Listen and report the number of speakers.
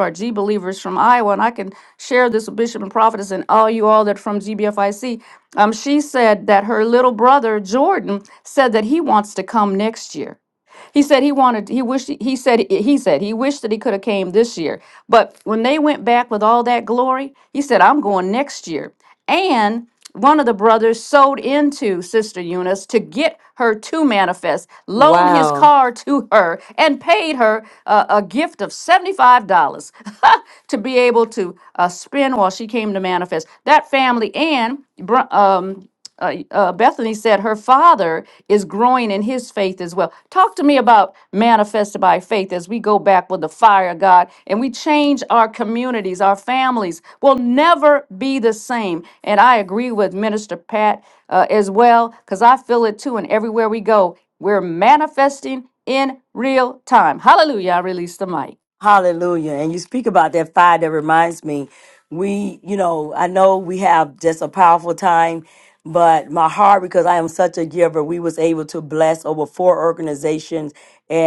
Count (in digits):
2